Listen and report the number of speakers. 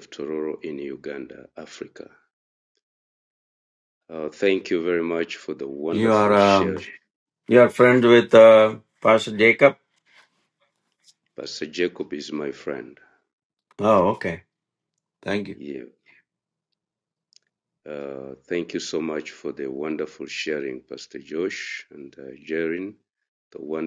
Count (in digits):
2